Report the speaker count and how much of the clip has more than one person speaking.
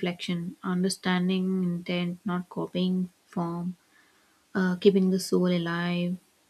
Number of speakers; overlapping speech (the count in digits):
1, no overlap